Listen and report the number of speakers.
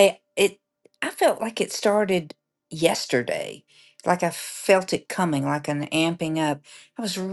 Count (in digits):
1